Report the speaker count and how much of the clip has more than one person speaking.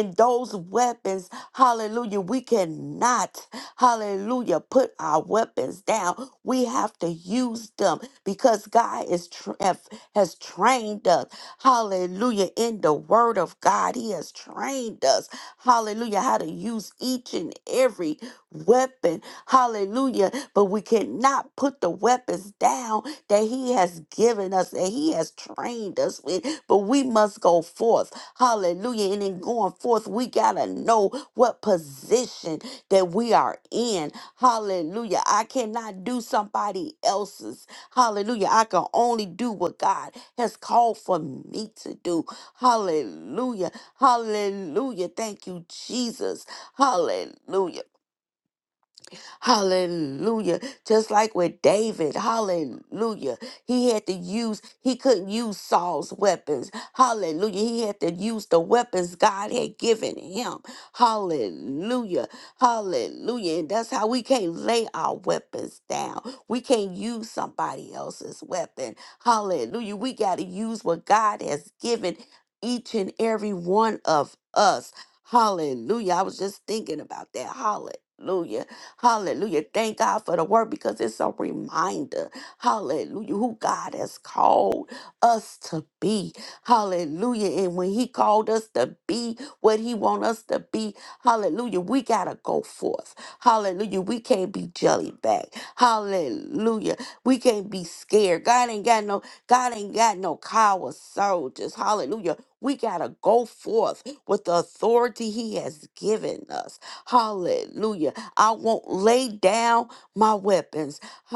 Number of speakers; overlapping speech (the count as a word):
one, no overlap